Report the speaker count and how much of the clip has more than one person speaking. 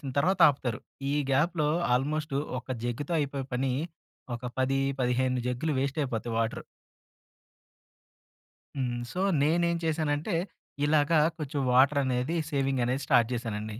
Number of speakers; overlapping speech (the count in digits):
1, no overlap